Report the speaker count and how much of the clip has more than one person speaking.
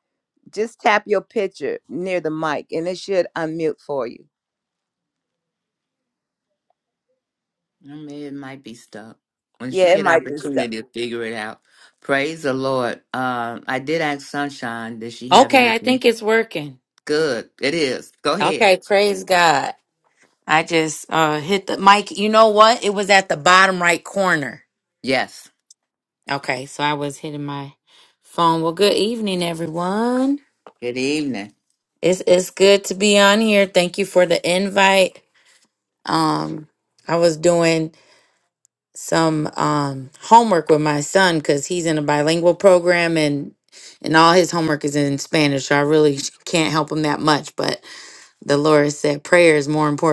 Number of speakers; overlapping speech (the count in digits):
3, about 4%